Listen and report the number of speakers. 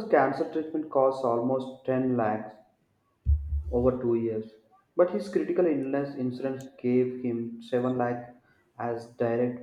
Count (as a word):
one